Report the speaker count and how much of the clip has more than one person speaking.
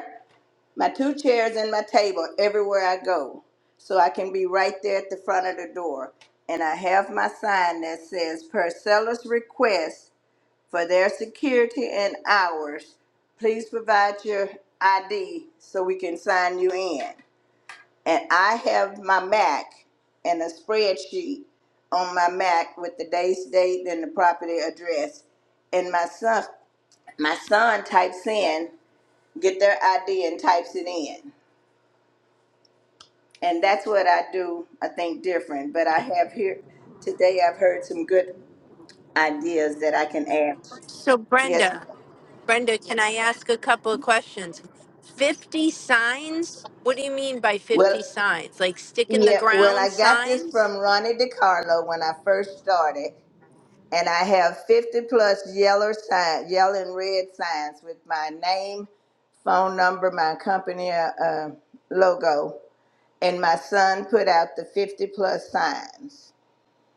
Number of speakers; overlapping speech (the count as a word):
two, about 3%